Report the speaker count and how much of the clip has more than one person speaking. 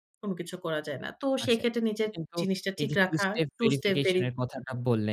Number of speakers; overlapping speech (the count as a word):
two, about 42%